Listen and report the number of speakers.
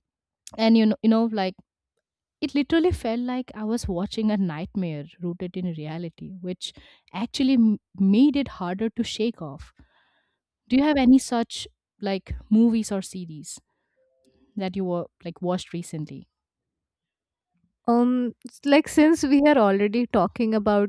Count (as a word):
two